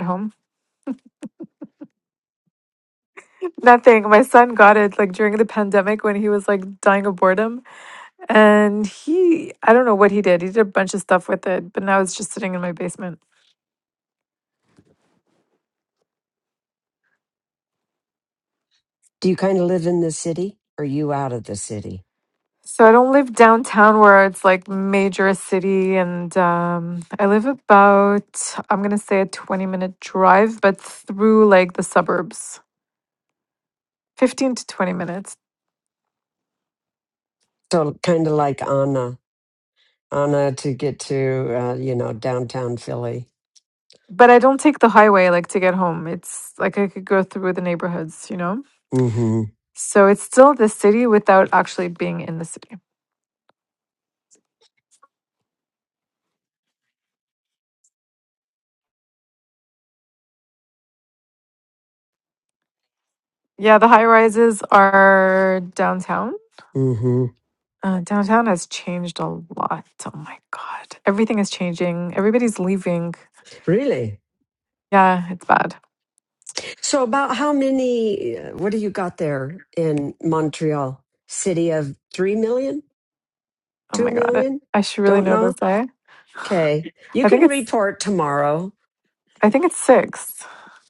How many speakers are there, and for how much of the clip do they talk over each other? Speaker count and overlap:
2, about 2%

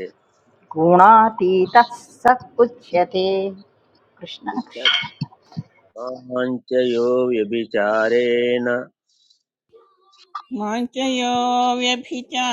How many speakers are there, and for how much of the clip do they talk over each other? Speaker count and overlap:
3, about 3%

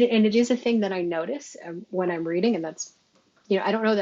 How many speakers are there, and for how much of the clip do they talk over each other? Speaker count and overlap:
1, no overlap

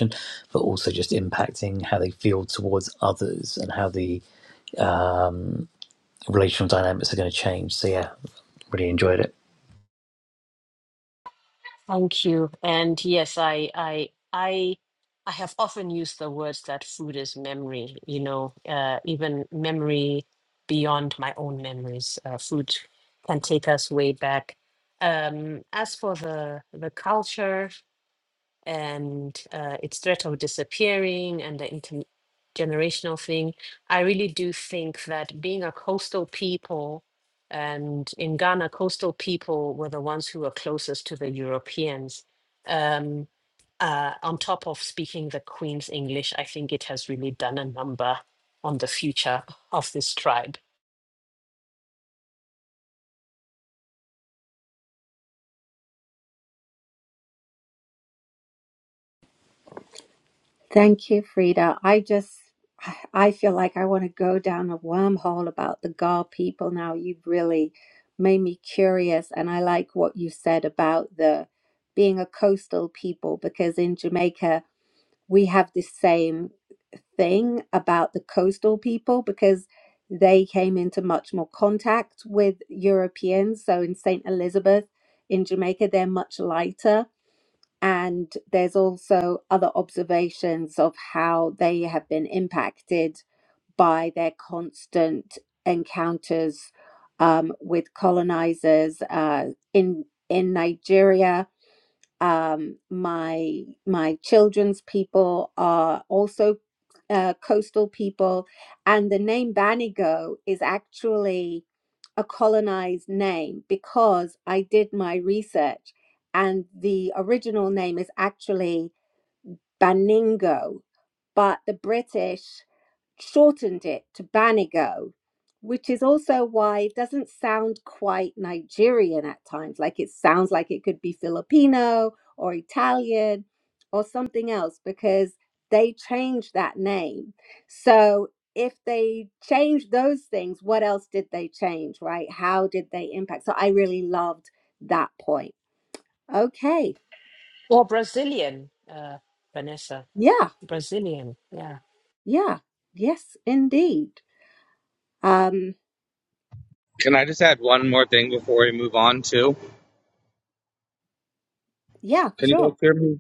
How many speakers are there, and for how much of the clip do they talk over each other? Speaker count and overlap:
4, under 1%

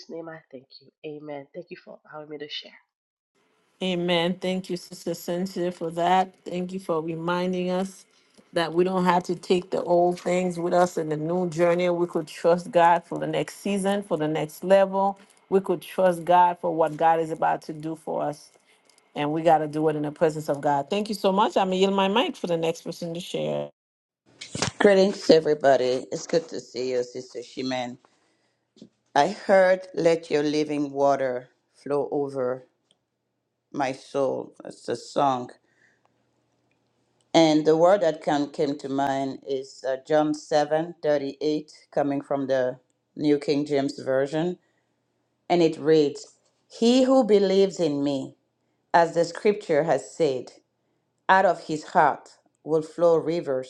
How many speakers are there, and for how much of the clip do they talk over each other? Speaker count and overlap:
3, no overlap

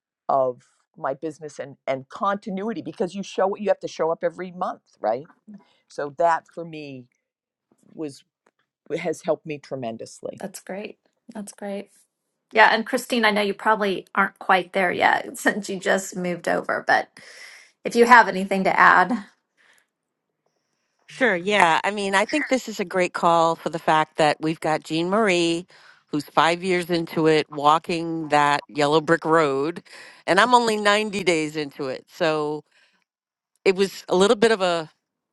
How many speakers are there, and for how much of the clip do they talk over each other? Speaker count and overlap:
3, no overlap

